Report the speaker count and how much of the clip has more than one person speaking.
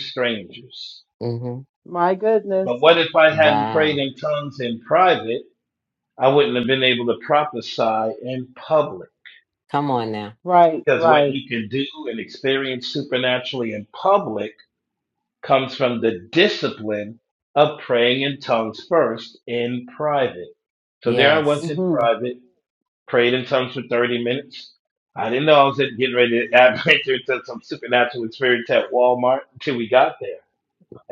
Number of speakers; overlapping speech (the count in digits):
3, about 7%